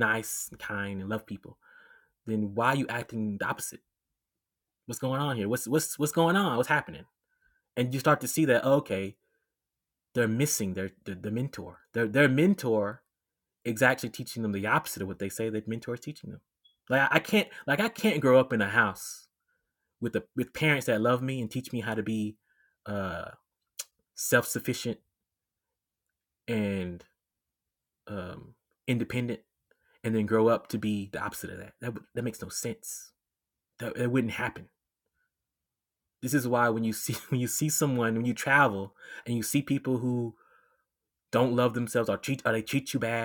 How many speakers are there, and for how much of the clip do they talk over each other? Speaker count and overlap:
1, no overlap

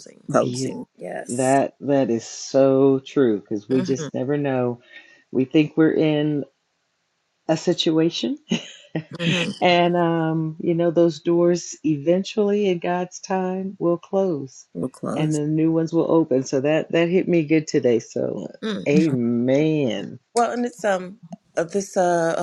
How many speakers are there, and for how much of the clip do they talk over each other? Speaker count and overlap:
3, about 5%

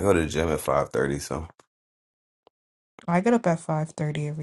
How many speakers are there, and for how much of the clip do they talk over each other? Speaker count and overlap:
2, no overlap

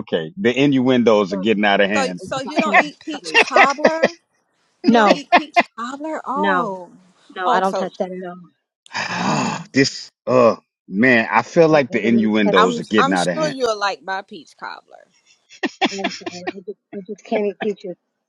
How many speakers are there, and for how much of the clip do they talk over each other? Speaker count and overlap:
3, about 23%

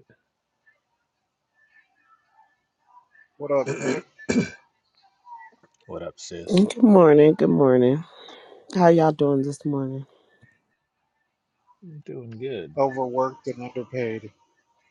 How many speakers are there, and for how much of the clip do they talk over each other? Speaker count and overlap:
3, about 1%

